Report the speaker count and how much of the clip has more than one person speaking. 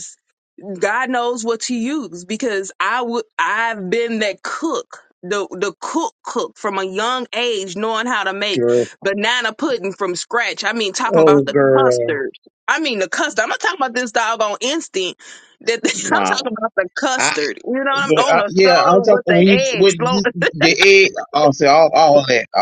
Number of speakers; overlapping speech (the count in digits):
2, about 18%